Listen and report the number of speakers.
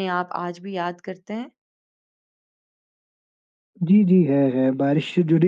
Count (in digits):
2